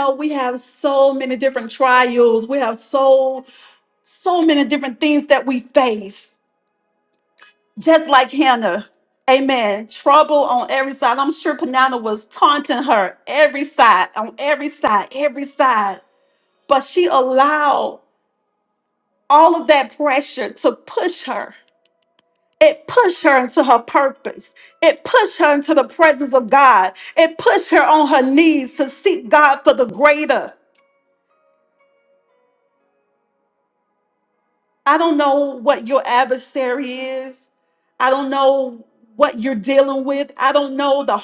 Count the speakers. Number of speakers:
1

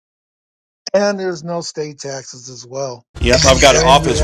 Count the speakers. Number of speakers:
2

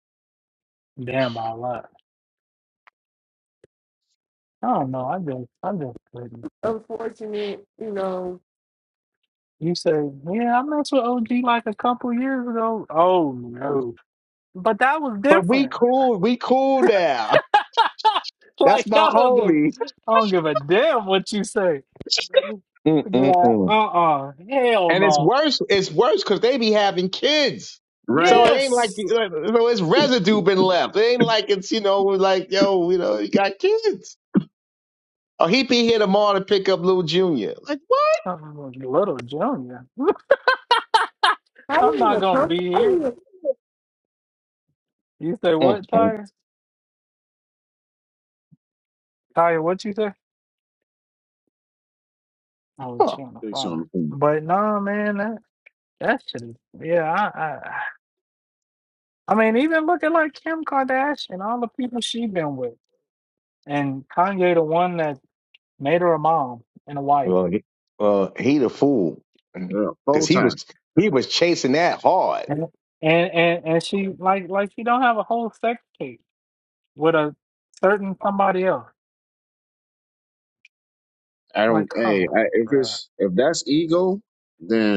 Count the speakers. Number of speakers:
4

